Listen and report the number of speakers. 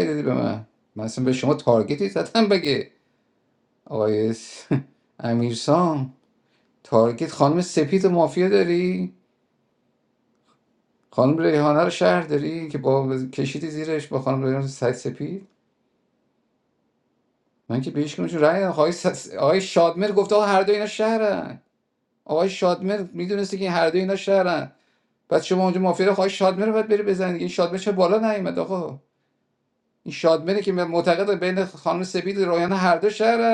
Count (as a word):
one